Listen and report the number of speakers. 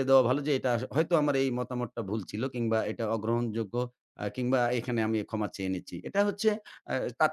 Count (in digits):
1